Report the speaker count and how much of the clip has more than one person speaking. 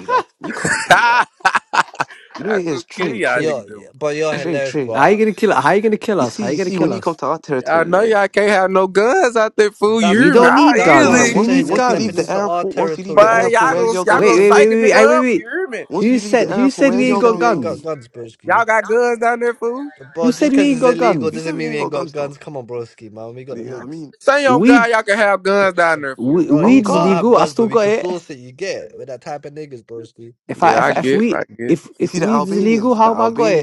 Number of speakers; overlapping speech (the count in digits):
4, about 54%